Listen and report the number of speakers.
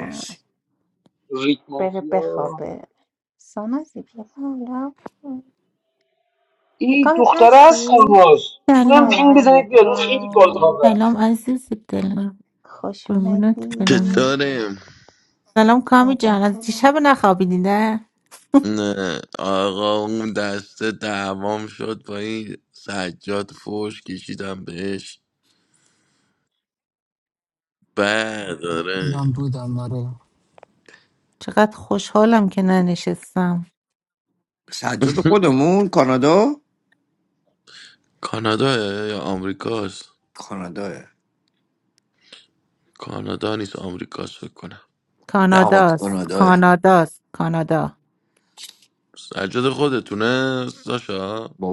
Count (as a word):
six